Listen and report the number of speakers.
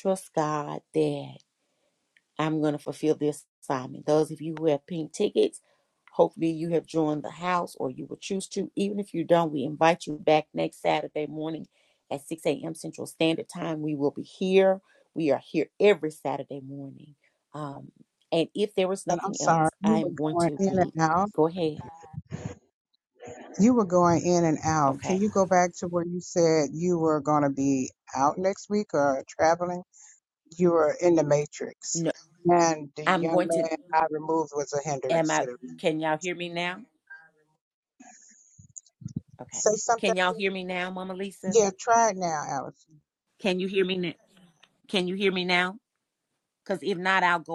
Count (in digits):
2